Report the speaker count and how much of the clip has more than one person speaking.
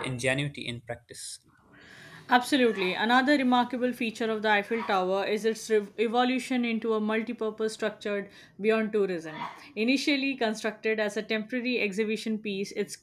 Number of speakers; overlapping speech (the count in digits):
2, no overlap